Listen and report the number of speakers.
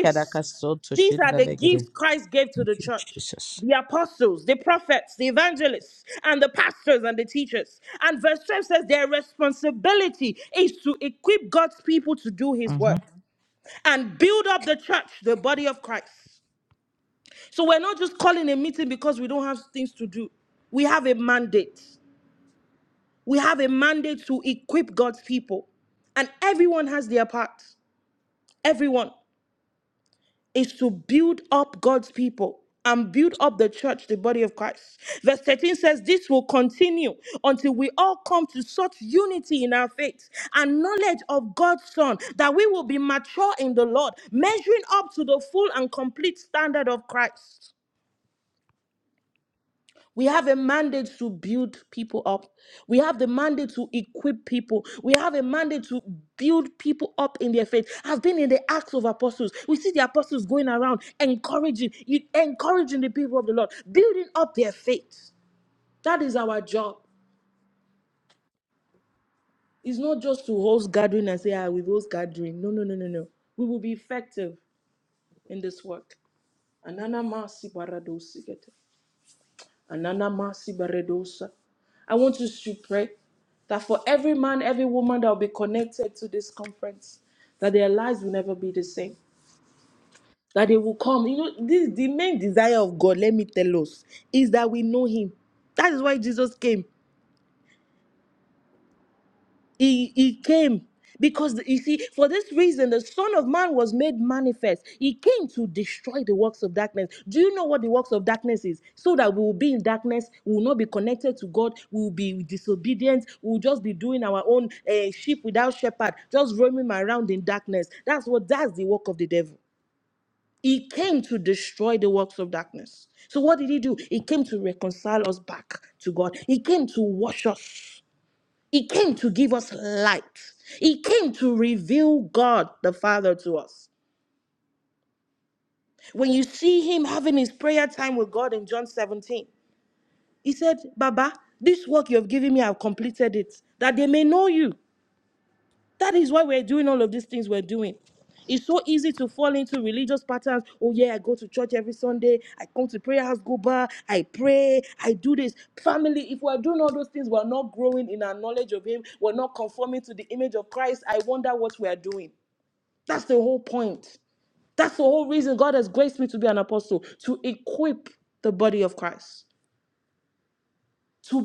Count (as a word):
two